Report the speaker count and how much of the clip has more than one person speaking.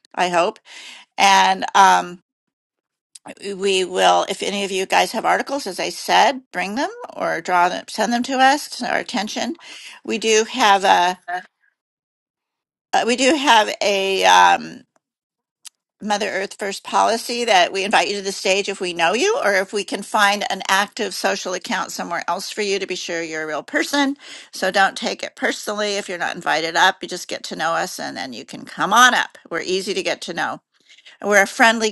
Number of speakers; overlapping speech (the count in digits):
1, no overlap